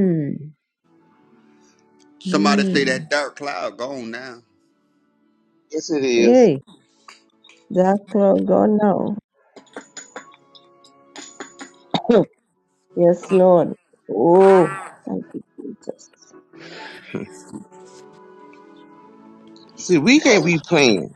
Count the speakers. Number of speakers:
3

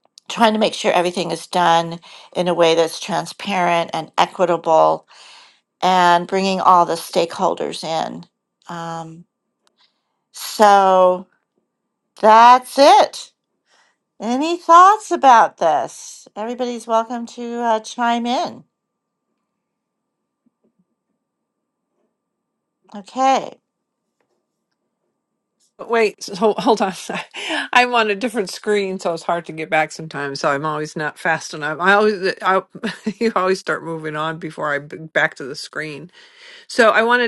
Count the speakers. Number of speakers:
2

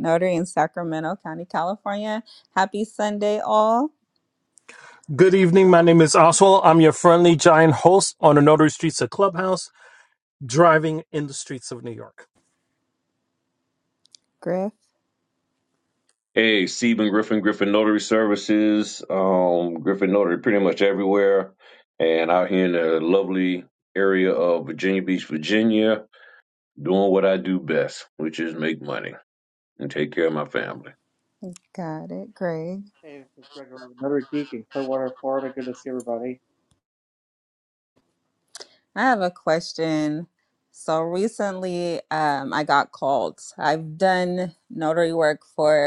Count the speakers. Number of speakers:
4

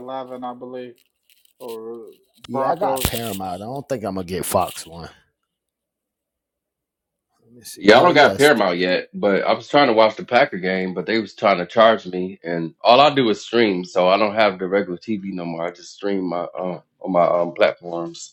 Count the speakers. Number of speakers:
3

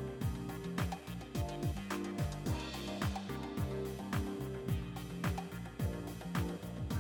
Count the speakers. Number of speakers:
0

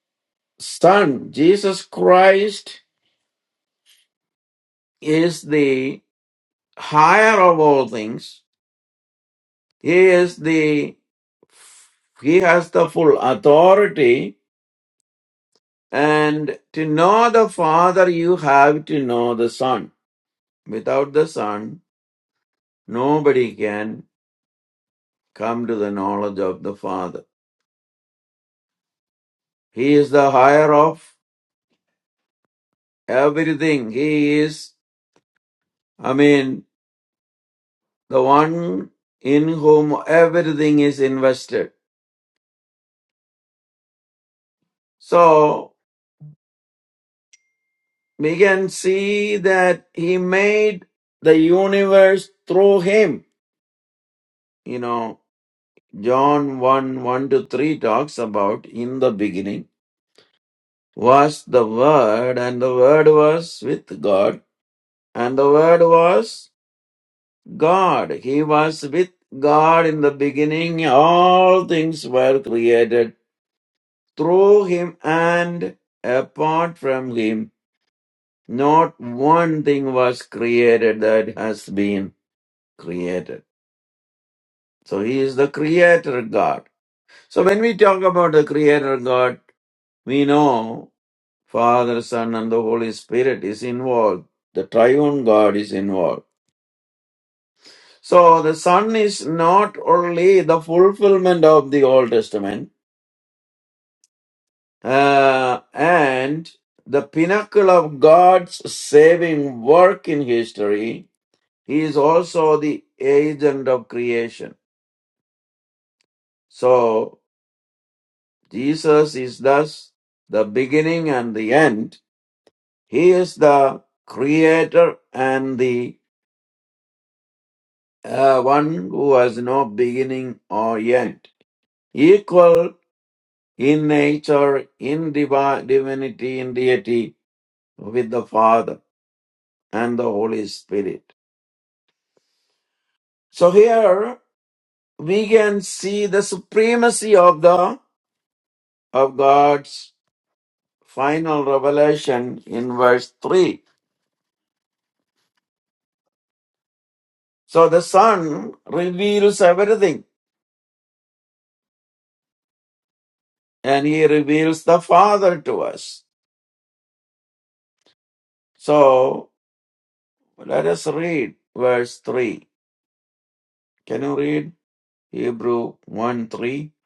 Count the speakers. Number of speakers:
1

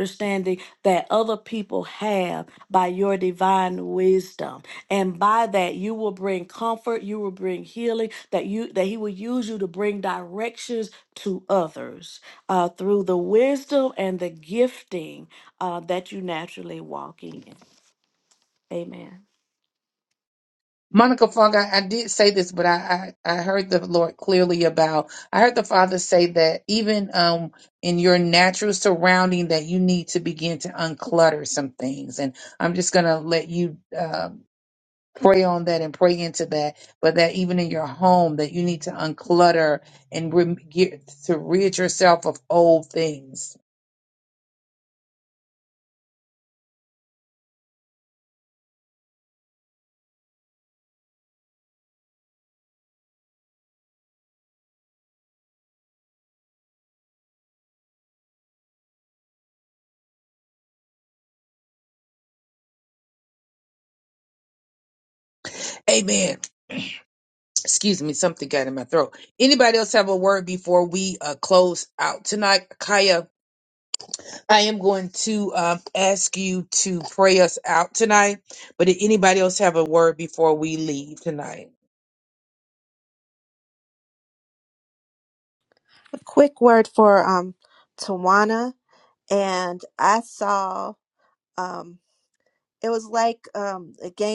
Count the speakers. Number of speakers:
3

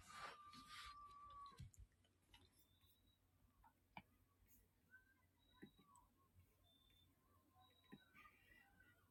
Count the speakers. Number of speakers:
0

